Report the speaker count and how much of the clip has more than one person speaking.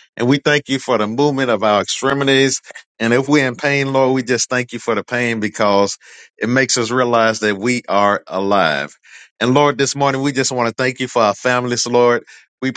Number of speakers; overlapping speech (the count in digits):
1, no overlap